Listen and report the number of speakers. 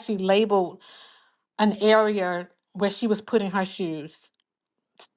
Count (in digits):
1